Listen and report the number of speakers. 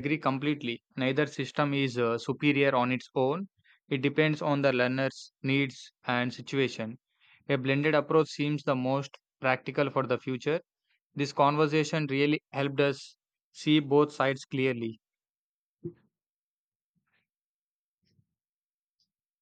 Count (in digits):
1